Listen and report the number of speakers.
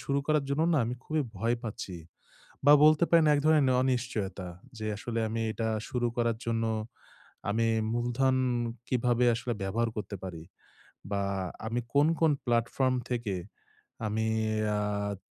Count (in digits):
1